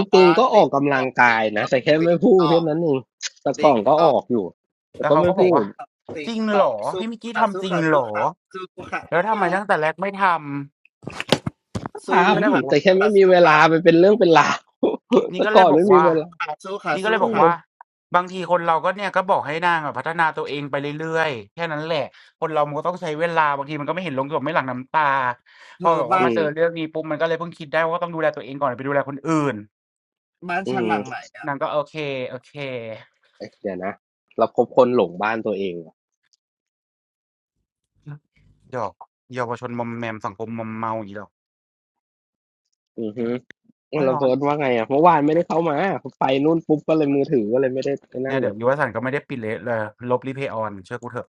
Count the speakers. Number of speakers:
three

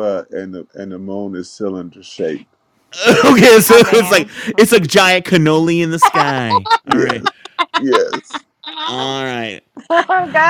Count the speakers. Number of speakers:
three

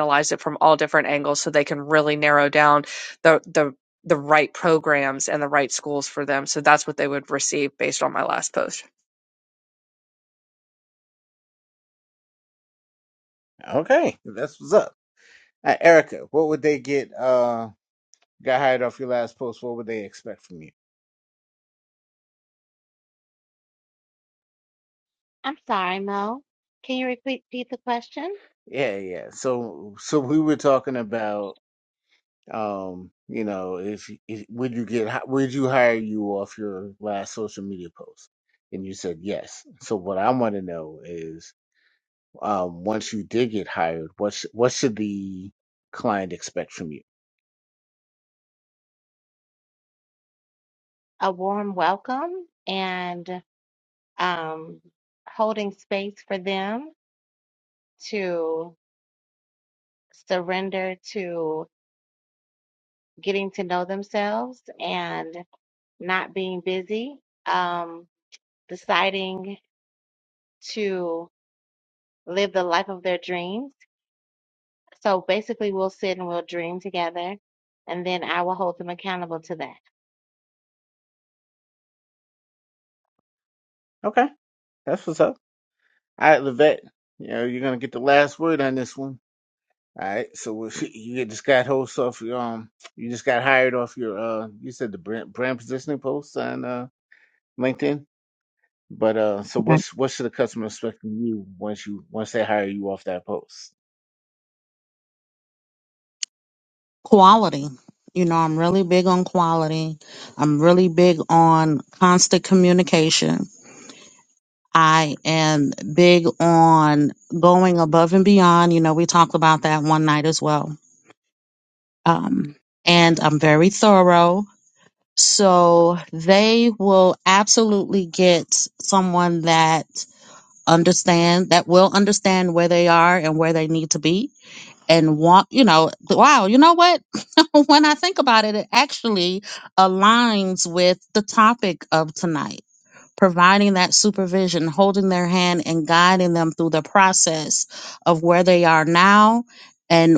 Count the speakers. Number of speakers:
four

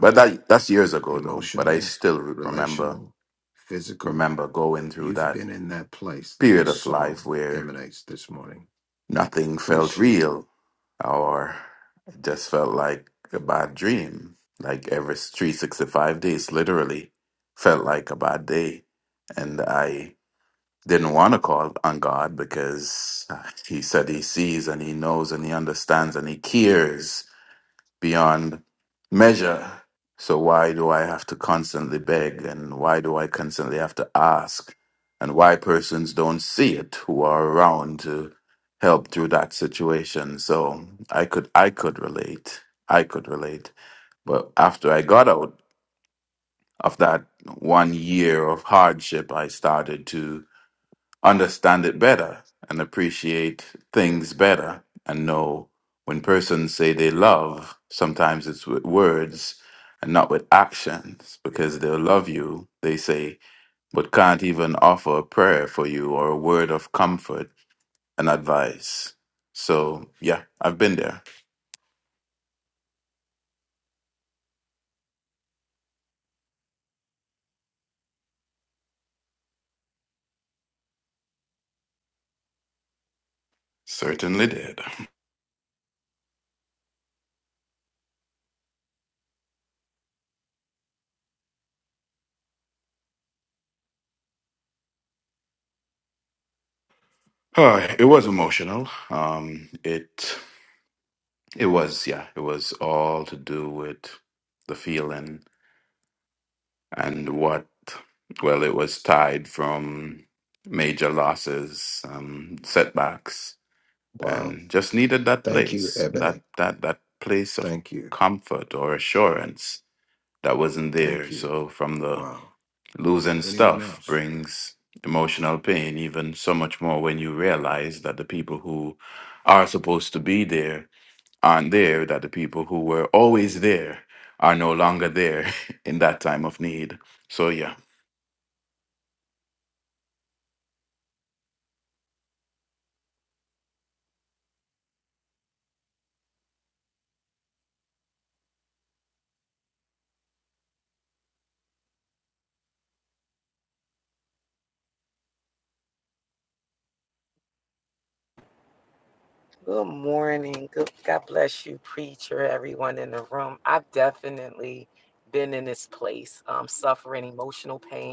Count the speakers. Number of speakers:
three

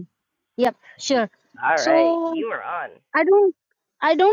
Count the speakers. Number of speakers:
two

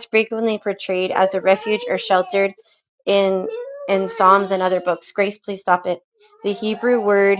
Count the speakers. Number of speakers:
one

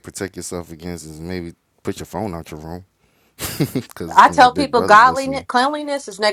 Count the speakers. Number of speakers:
two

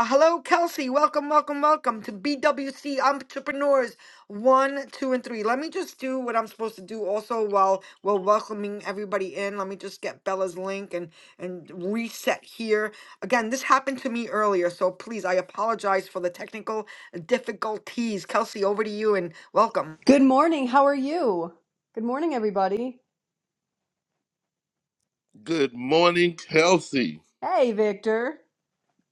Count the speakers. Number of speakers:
three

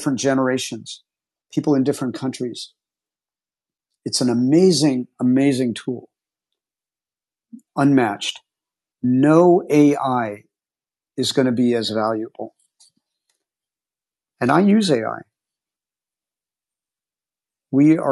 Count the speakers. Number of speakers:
one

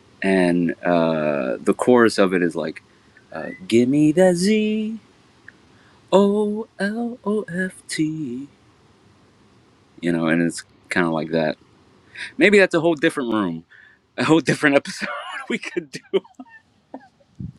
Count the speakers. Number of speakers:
one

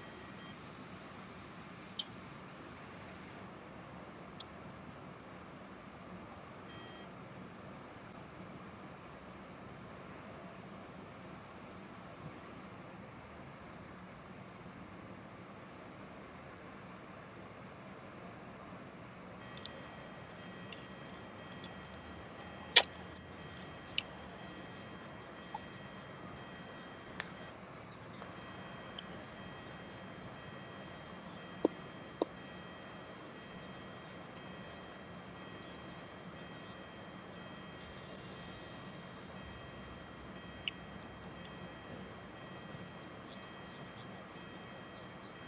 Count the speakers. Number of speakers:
zero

